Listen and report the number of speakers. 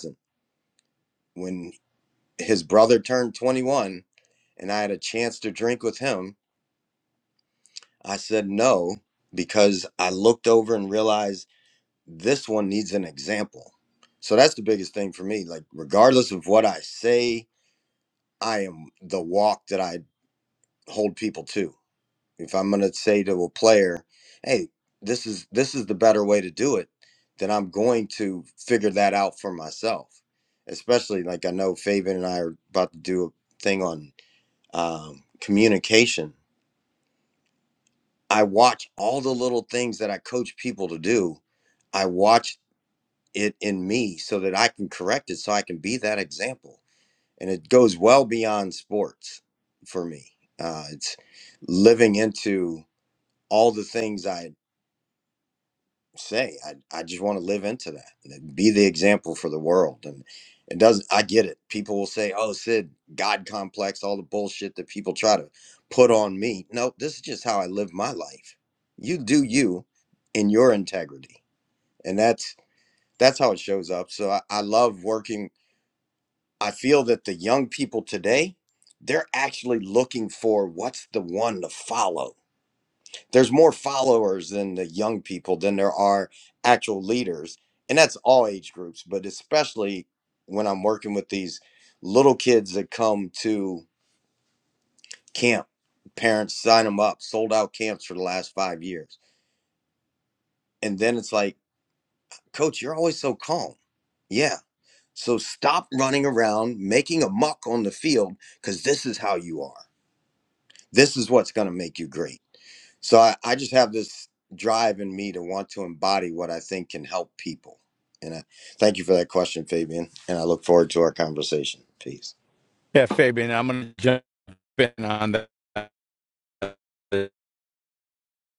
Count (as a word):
two